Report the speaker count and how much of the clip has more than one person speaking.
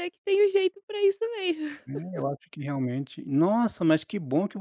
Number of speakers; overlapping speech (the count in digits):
2, no overlap